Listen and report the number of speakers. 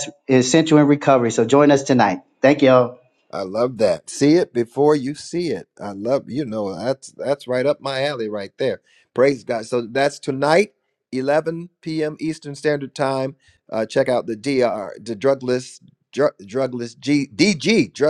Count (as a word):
two